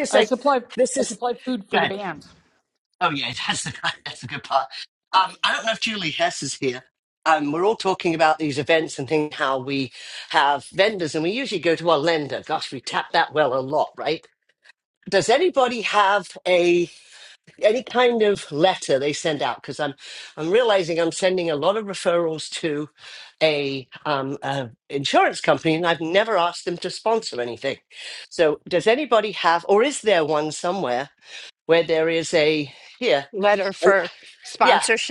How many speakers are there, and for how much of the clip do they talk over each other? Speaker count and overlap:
3, about 3%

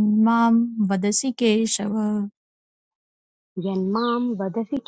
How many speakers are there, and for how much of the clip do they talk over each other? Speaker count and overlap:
2, no overlap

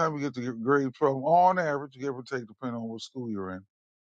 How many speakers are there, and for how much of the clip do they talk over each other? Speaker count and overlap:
1, no overlap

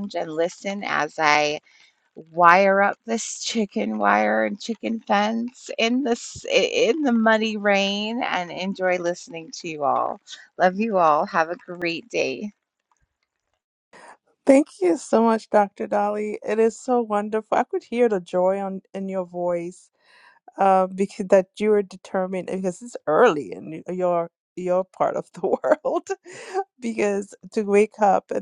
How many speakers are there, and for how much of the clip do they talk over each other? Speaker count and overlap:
2, no overlap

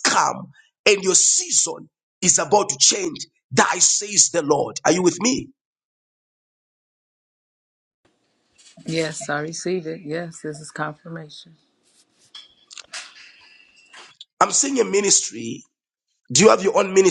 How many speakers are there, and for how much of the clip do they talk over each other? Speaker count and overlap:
2, no overlap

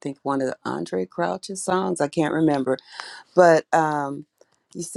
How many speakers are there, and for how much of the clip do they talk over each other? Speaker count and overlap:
1, no overlap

